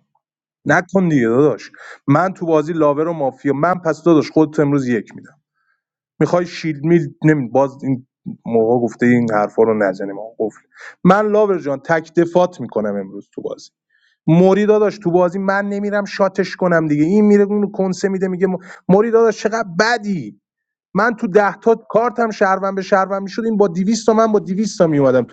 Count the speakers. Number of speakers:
1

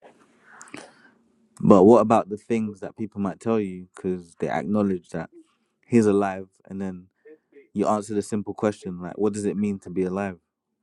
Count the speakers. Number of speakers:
1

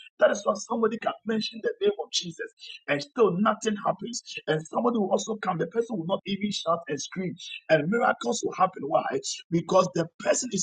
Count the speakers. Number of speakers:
1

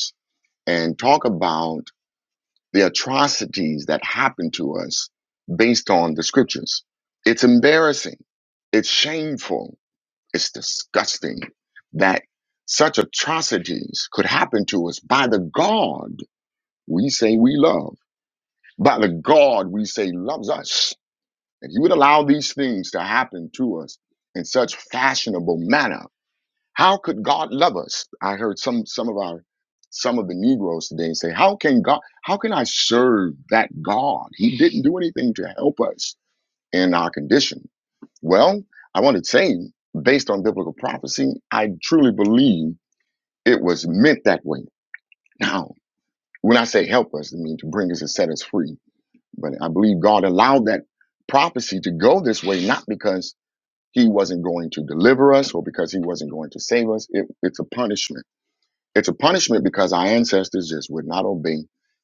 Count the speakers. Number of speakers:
1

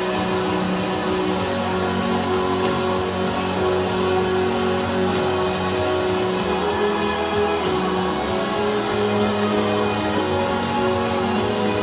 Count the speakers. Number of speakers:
0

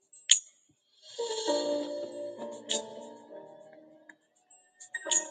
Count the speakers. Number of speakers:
0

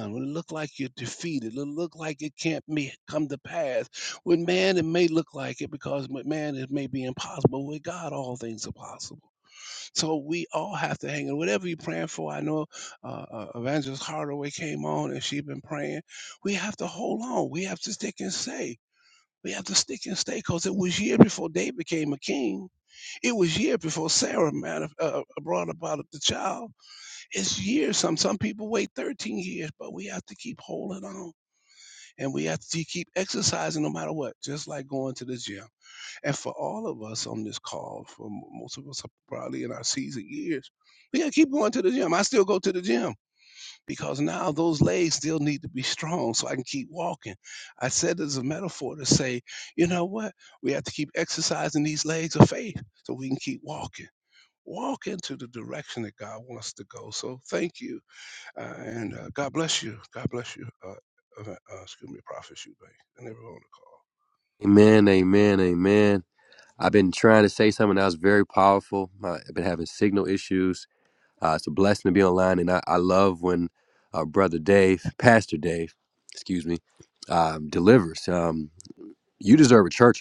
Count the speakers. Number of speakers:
2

